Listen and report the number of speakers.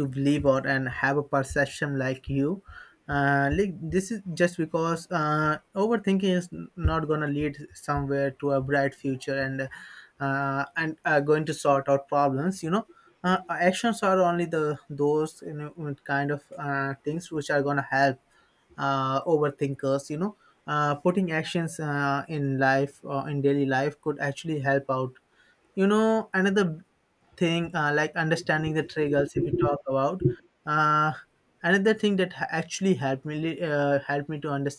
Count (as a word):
one